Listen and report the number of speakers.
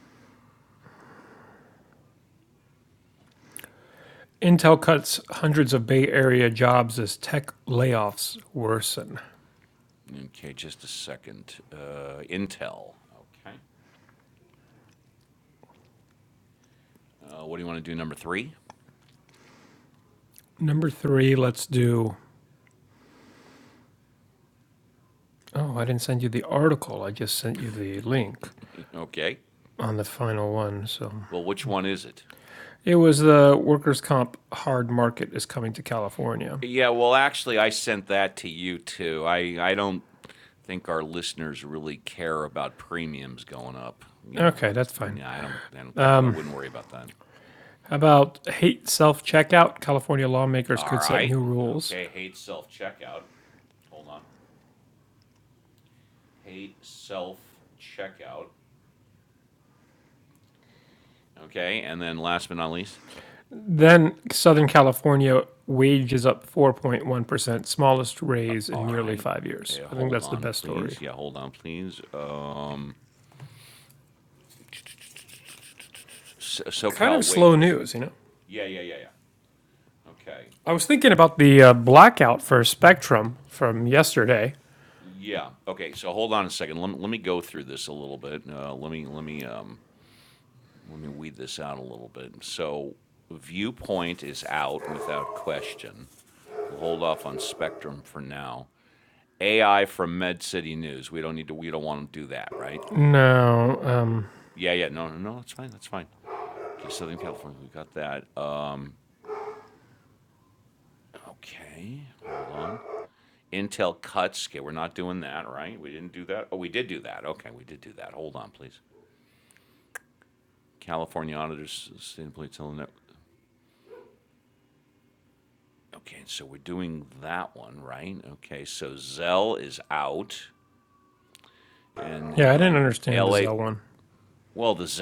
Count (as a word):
two